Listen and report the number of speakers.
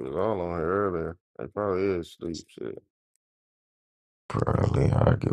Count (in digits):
2